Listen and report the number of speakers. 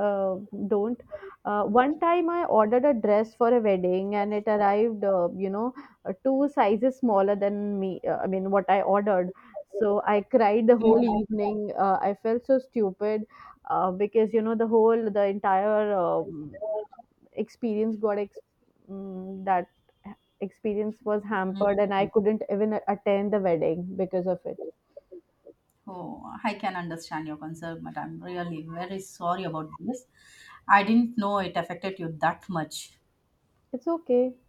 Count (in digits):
2